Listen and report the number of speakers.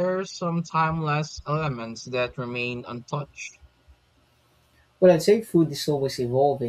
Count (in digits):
2